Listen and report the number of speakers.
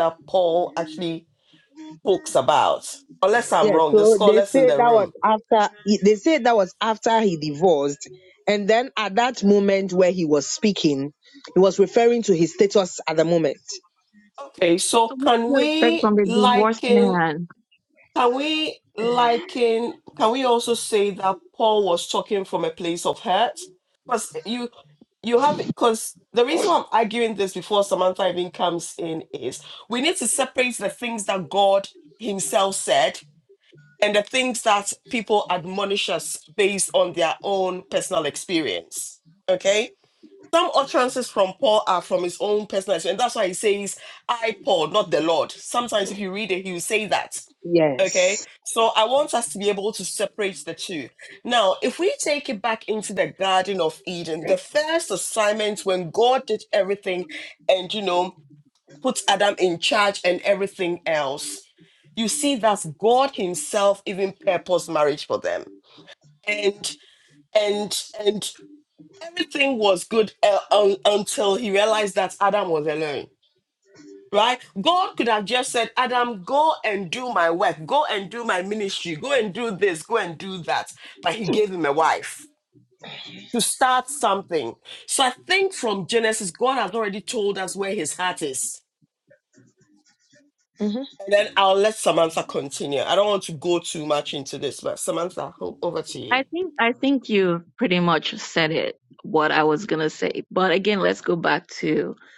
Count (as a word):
three